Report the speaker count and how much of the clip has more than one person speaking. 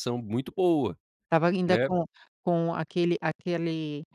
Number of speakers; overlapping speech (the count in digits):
2, about 6%